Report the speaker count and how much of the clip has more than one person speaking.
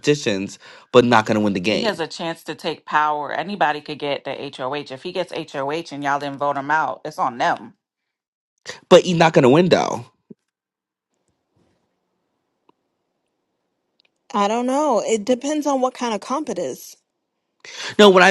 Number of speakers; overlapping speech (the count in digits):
3, about 1%